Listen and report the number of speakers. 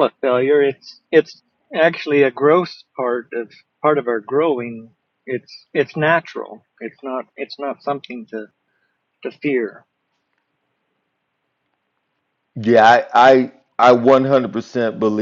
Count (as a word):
two